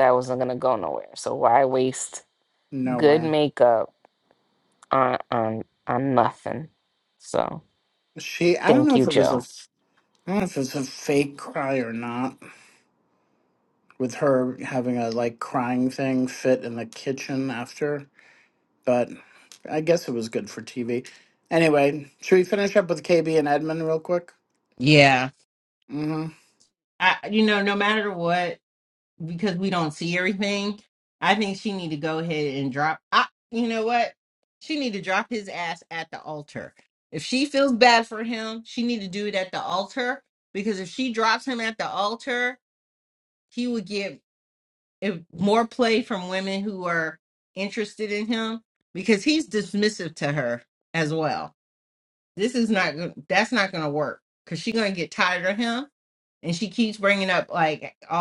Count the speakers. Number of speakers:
3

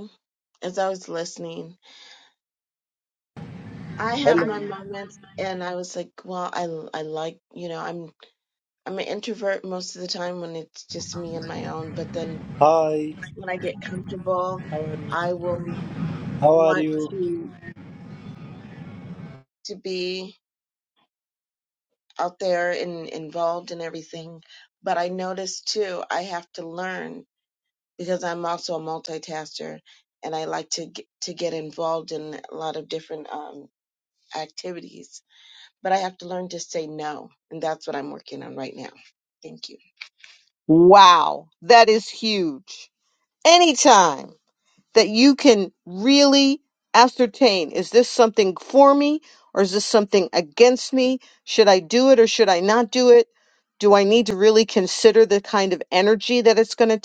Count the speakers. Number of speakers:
3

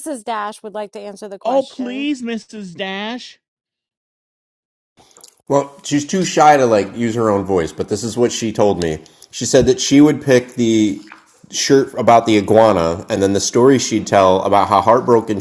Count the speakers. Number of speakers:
3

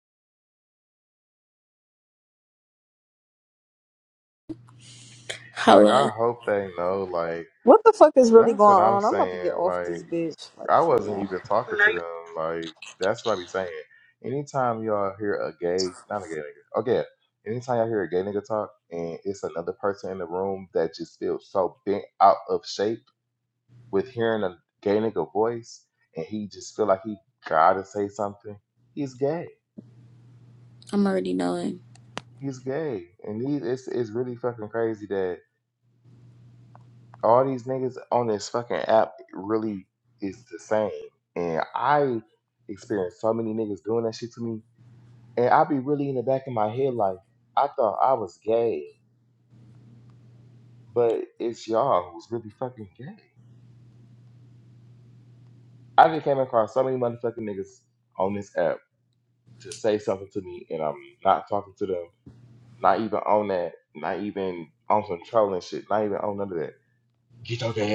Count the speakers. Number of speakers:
3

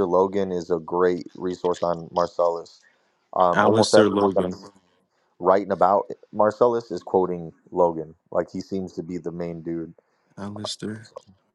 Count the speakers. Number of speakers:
2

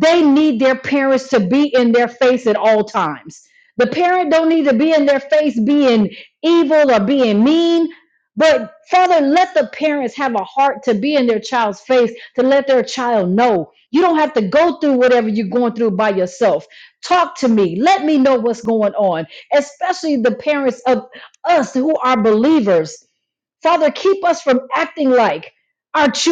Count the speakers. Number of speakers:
1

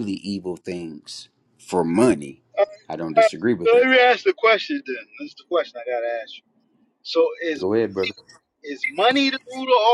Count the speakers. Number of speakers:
2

